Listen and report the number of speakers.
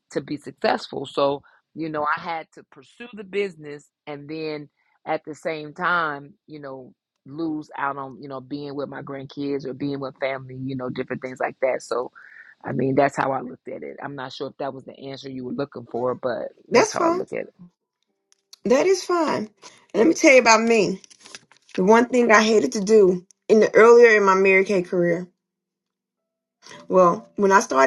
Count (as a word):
two